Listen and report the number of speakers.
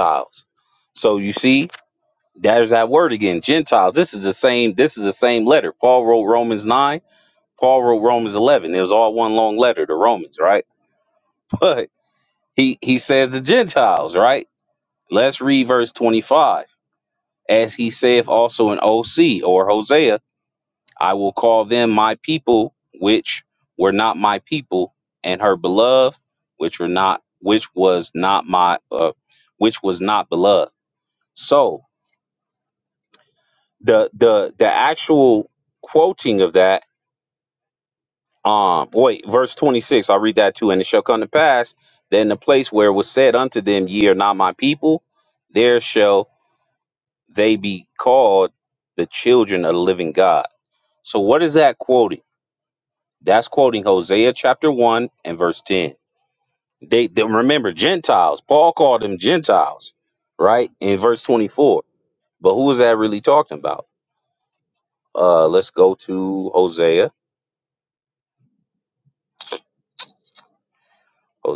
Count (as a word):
one